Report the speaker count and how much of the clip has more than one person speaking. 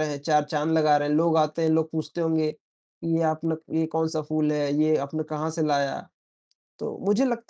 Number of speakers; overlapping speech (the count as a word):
one, no overlap